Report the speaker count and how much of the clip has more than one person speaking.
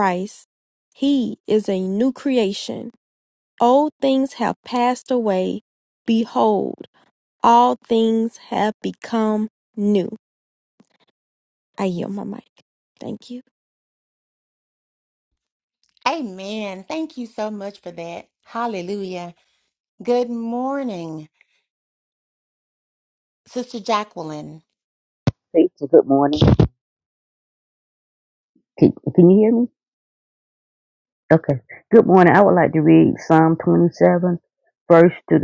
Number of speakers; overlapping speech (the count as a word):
three, no overlap